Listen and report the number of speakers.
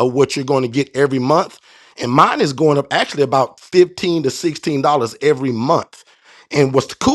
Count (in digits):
1